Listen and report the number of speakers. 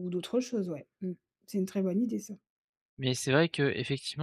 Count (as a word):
two